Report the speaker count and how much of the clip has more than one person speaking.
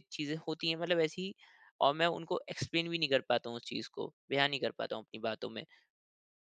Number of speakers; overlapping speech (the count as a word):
one, no overlap